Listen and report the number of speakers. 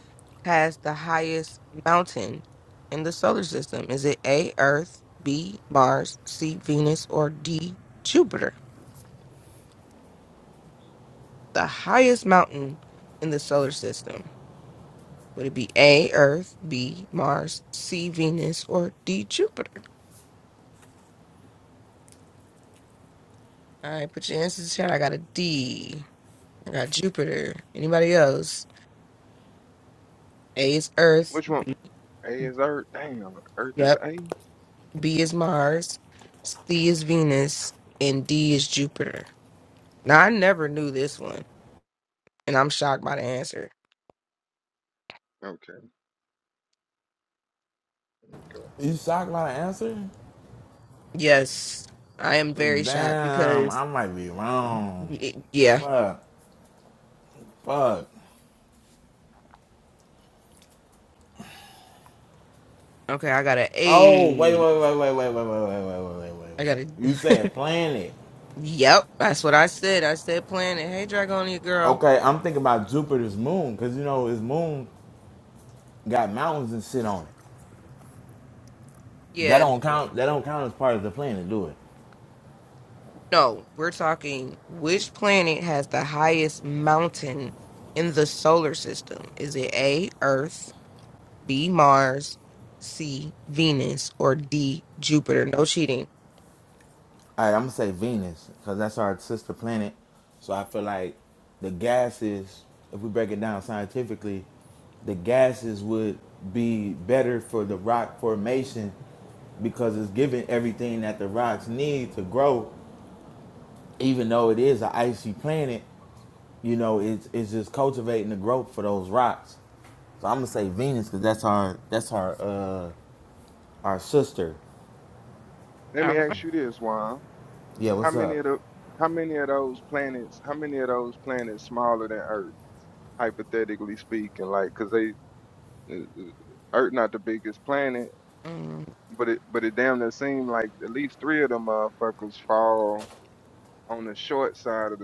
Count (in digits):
3